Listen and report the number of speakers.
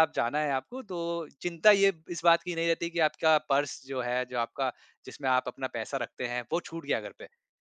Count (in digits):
1